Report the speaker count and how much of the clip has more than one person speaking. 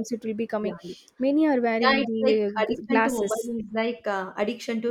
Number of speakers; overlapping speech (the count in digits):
2, about 33%